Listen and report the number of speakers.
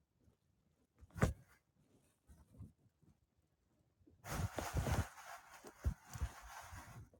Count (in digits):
0